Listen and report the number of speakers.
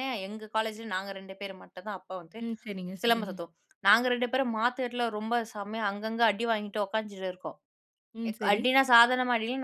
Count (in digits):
2